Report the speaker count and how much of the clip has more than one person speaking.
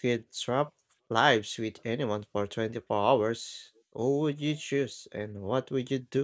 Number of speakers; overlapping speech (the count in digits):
1, no overlap